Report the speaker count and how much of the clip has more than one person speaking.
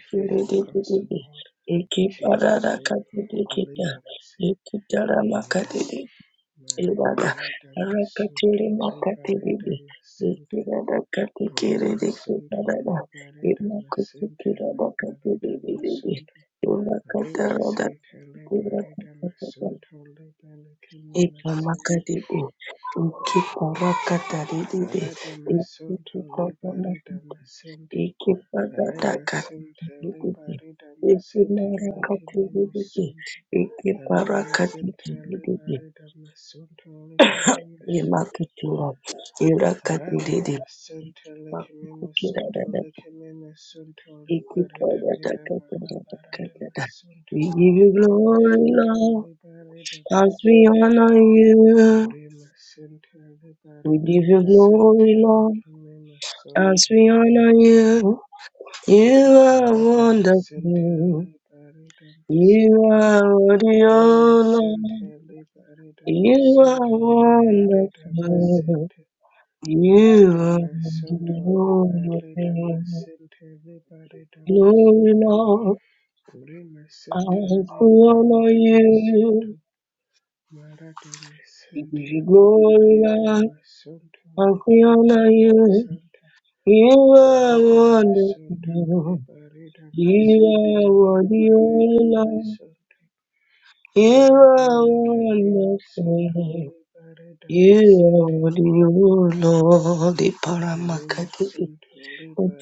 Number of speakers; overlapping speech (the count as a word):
two, about 41%